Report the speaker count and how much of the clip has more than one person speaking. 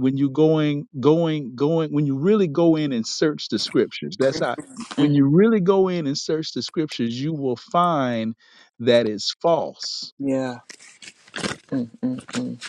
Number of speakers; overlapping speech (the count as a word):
two, about 2%